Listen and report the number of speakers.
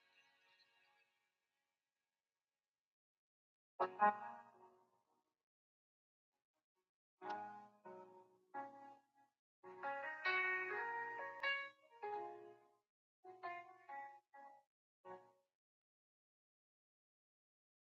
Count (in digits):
0